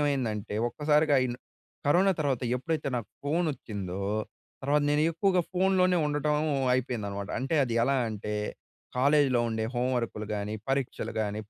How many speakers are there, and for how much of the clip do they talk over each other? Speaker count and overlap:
one, no overlap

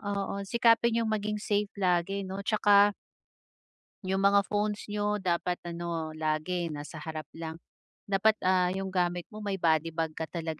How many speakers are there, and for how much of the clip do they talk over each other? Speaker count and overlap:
one, no overlap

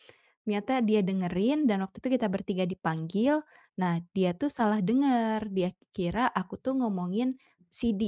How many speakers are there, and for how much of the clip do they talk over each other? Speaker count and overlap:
one, no overlap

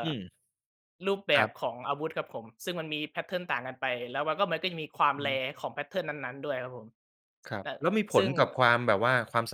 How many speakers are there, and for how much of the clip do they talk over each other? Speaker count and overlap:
two, about 7%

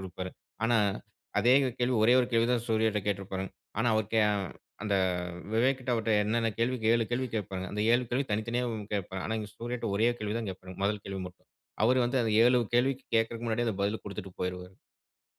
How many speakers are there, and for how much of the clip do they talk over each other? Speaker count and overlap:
one, no overlap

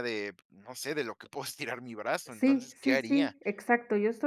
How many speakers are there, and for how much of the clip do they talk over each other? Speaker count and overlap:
two, about 25%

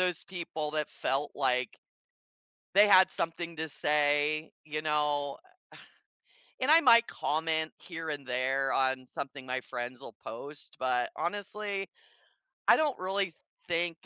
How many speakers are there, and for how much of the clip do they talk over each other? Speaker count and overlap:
one, no overlap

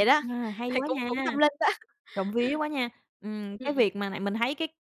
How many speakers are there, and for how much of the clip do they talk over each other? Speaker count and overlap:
two, about 15%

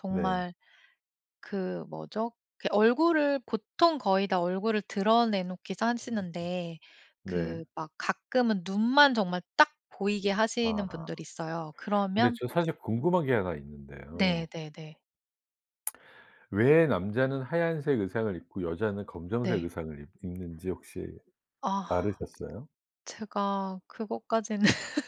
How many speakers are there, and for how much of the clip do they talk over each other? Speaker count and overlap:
two, about 8%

